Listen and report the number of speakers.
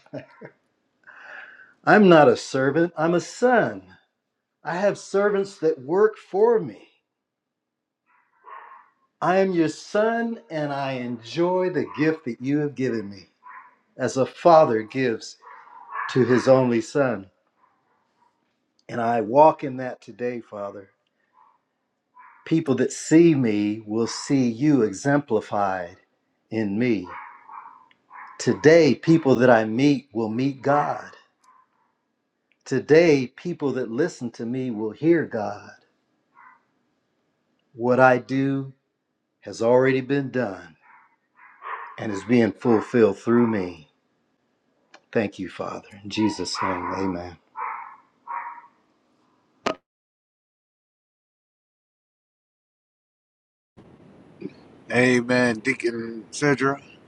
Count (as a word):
two